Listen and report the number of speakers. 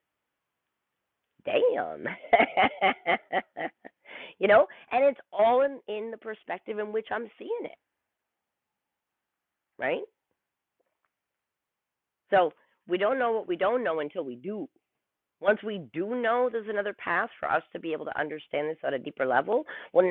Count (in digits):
1